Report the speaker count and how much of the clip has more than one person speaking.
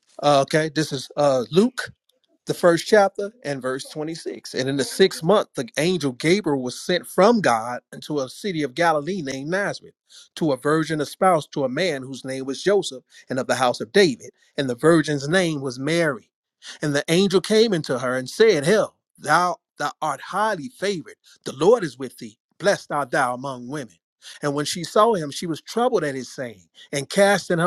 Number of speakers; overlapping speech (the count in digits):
1, no overlap